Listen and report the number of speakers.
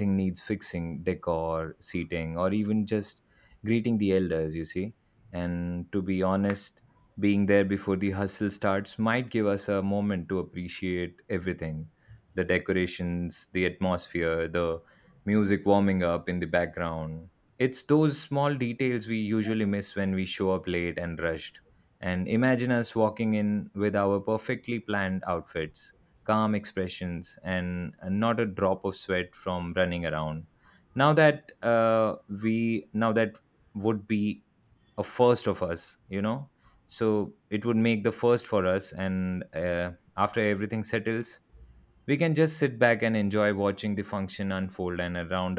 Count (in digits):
1